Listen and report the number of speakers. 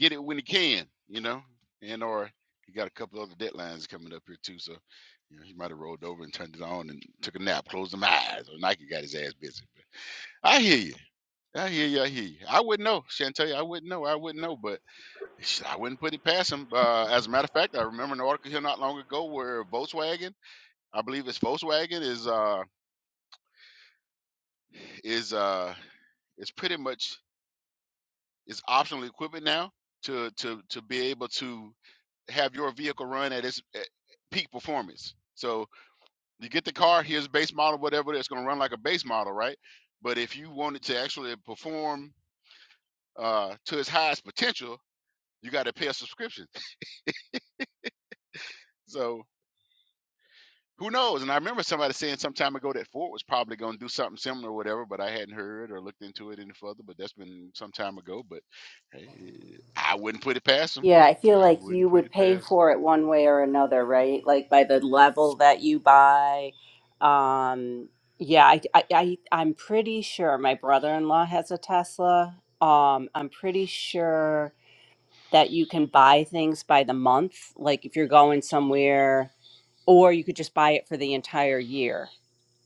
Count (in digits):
2